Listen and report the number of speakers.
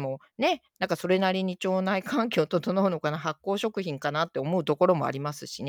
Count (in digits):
1